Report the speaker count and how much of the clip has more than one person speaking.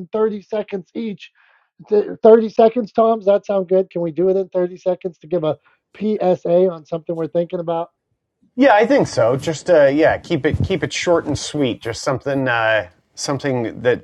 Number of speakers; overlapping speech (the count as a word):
two, no overlap